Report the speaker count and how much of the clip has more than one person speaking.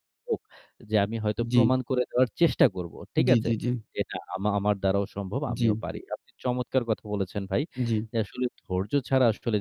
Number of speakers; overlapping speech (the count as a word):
two, about 9%